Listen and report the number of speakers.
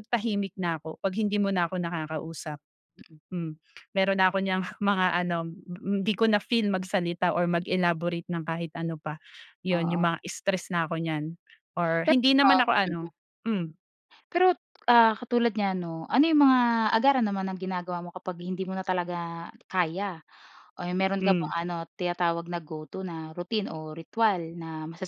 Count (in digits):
2